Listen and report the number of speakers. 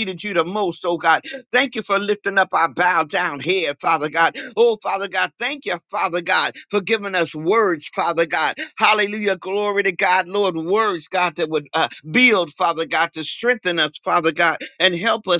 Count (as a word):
one